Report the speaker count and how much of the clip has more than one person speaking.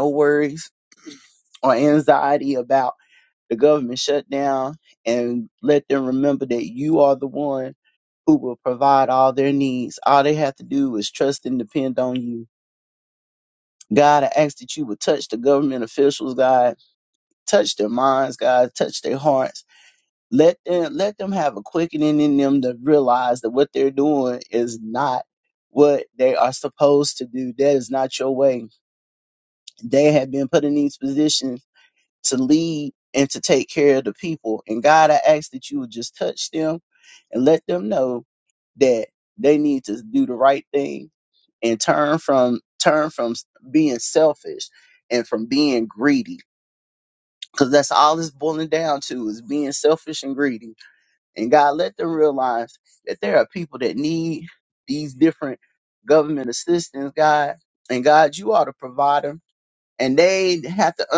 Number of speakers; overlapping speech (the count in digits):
1, no overlap